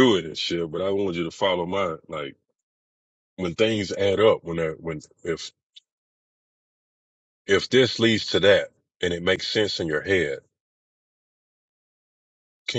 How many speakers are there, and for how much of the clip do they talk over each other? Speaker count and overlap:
1, no overlap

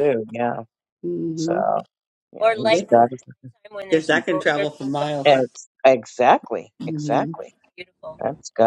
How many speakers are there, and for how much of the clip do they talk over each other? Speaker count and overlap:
3, about 25%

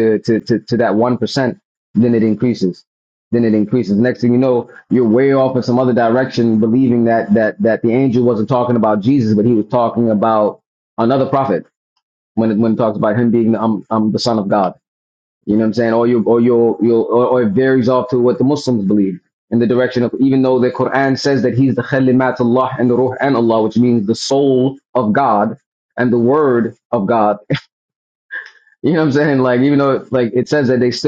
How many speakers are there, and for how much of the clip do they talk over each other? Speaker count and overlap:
1, no overlap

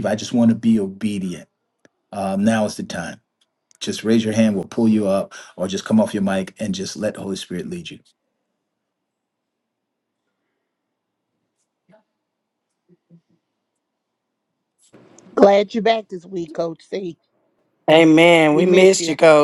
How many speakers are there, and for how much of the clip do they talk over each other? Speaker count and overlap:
3, about 3%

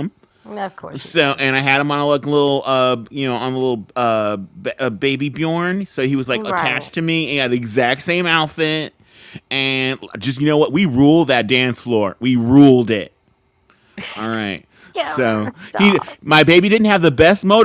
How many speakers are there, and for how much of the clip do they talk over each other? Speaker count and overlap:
2, about 11%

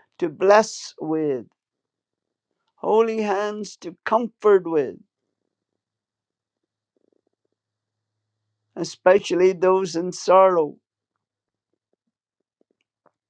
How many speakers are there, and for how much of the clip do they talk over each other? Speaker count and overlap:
1, no overlap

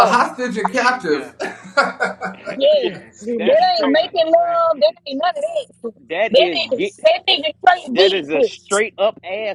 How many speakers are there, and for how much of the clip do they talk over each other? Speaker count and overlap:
3, about 21%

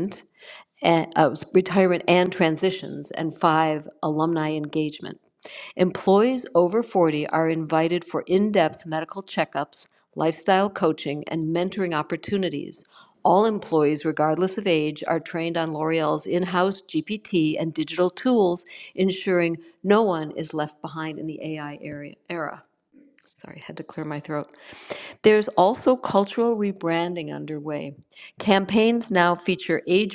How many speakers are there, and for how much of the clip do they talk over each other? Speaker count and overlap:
1, no overlap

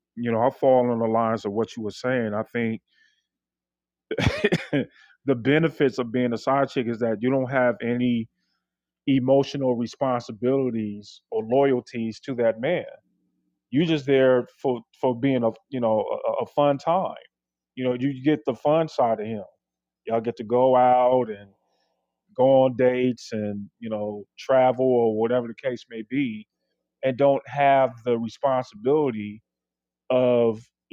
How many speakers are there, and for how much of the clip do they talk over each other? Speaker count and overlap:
1, no overlap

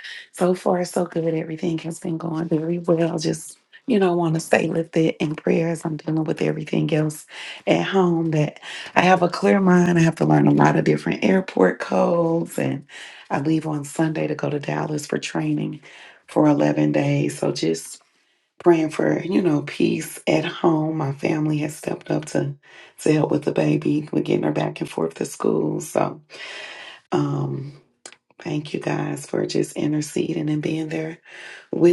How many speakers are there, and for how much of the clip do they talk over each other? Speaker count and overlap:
1, no overlap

